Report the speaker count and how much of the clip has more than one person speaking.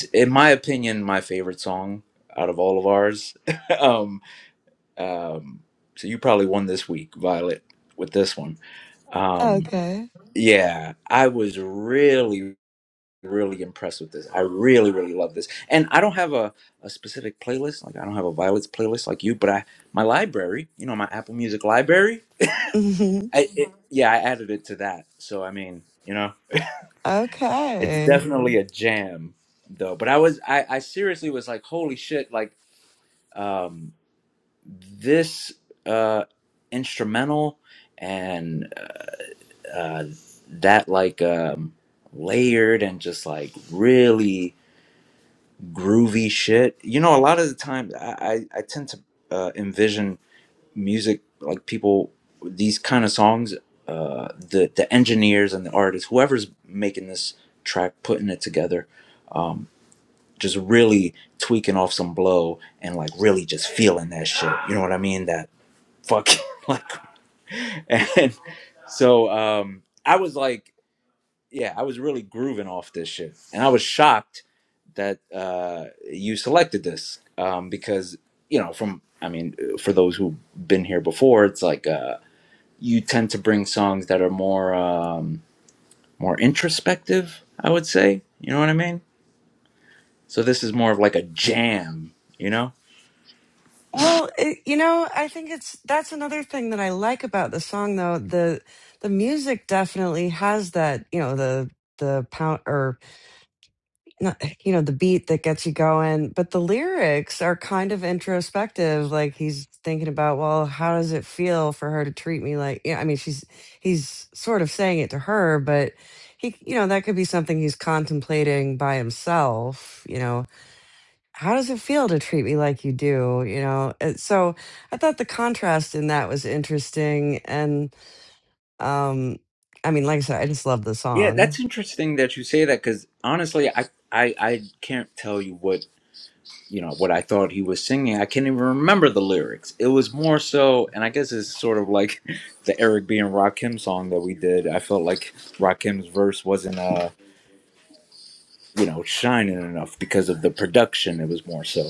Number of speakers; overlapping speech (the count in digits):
2, about 1%